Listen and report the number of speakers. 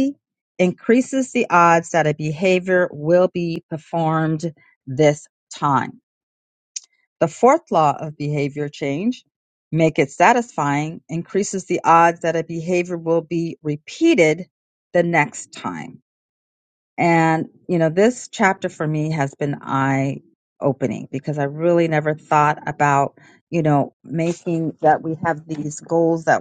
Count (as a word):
one